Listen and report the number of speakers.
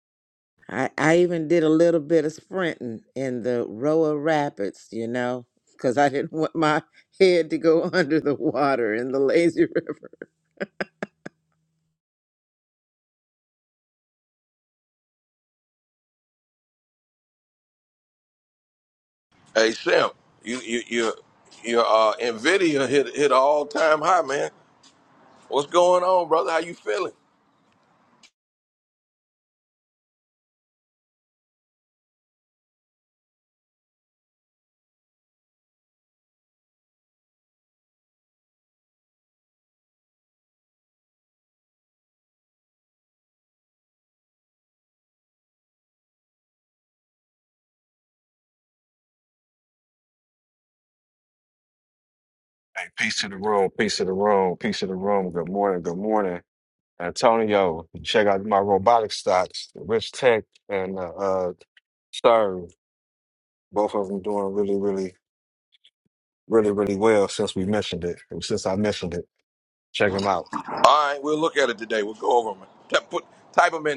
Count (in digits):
3